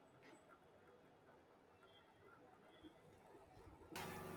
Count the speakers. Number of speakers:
0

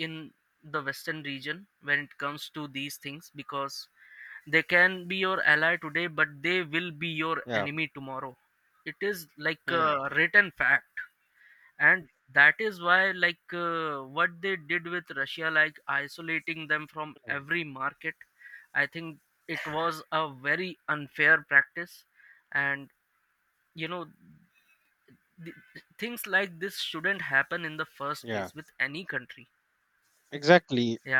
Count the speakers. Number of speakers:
2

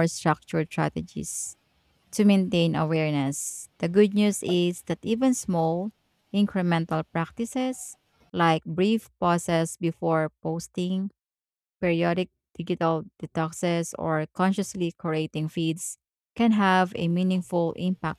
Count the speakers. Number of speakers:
1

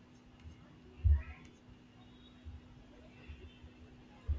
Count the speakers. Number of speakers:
0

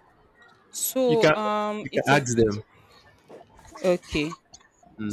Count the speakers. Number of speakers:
2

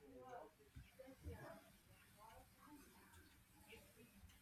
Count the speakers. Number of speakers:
0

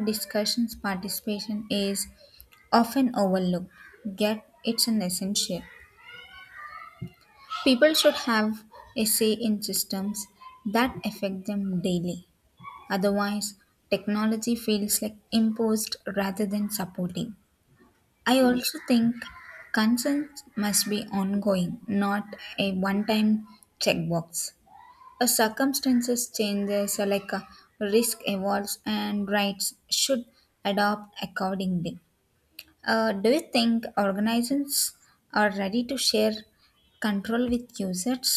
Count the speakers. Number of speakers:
1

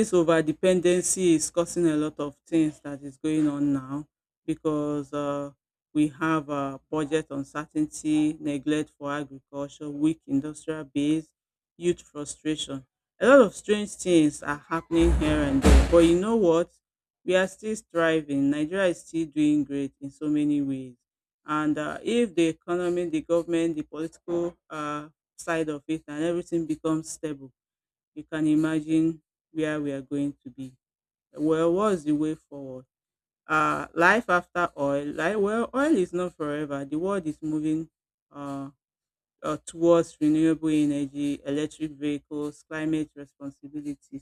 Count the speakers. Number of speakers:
1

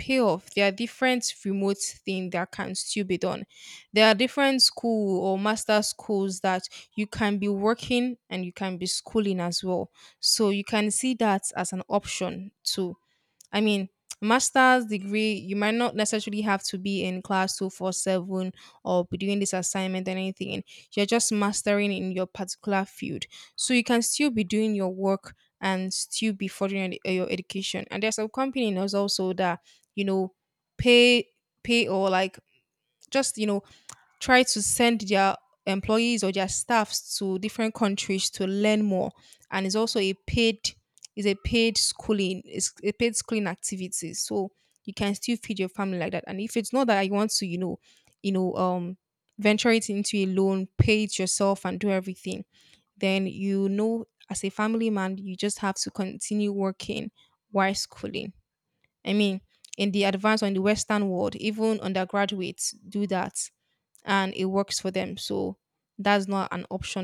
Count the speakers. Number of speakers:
1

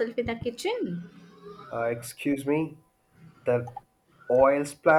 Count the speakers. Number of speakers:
2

